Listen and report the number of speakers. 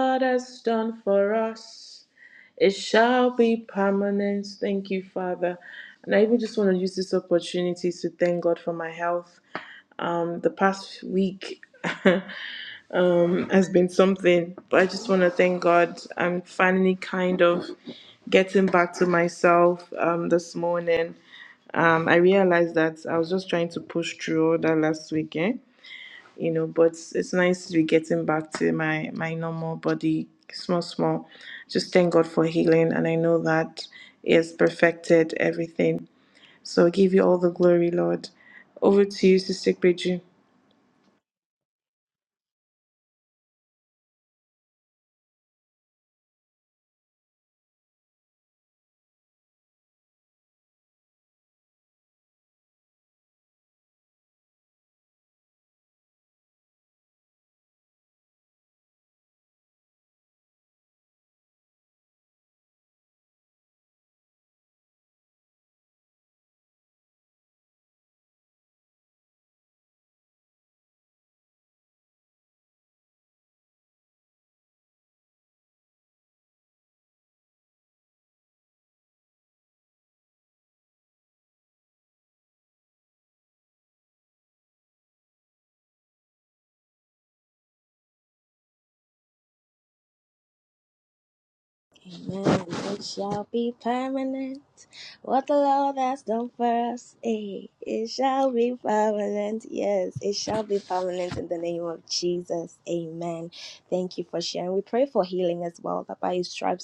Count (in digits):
2